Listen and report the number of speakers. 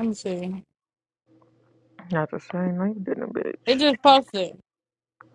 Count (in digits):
2